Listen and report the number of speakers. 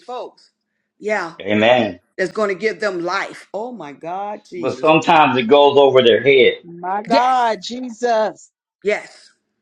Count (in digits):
3